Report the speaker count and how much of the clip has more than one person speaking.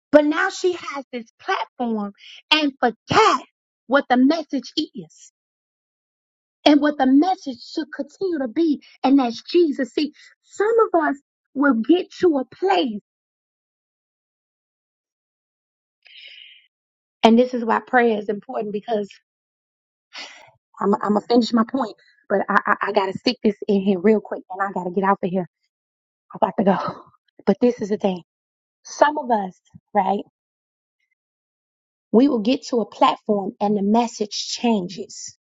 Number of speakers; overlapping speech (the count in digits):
1, no overlap